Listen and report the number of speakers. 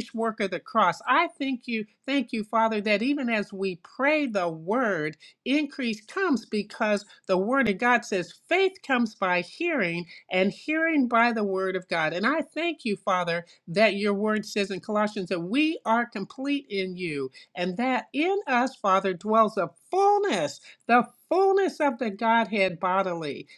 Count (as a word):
one